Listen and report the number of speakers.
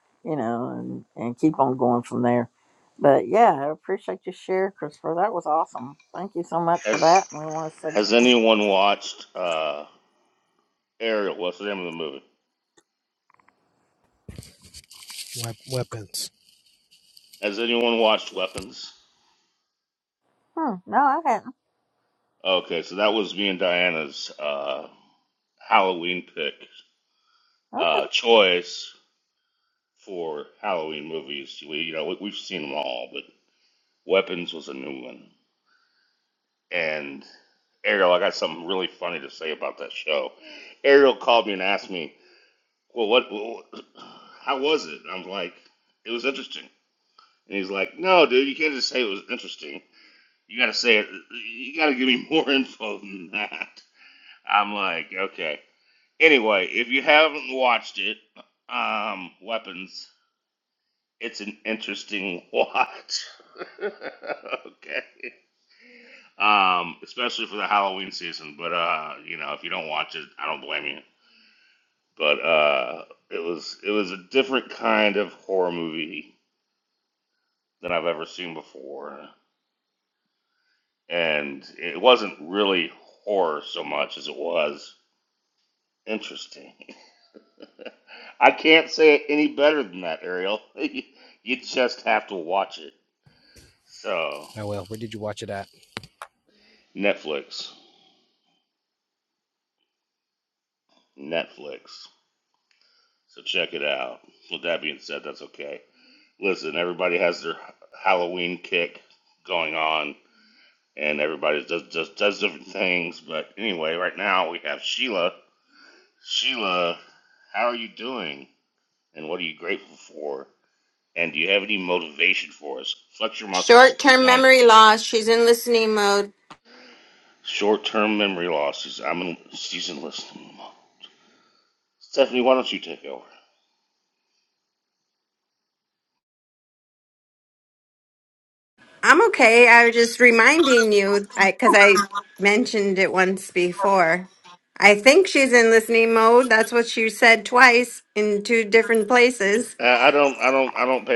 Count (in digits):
4